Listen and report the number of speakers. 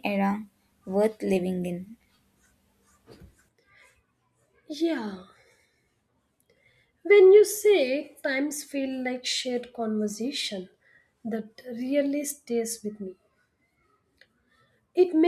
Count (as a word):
two